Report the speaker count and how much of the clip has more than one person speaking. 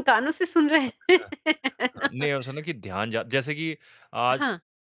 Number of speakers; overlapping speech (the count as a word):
two, about 17%